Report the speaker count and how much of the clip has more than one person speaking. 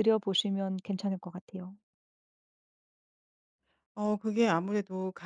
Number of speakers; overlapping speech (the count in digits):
2, no overlap